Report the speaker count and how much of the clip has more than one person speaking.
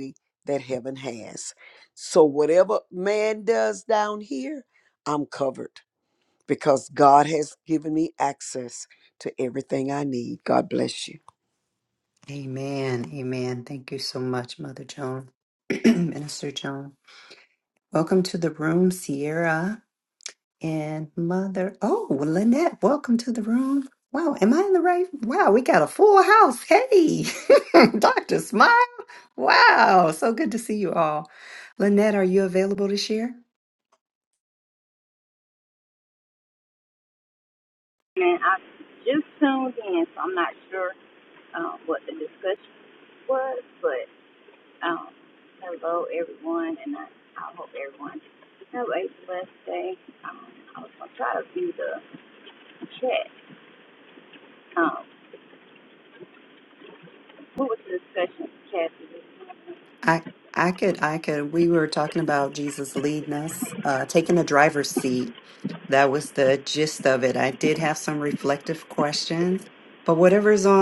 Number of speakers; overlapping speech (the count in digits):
3, no overlap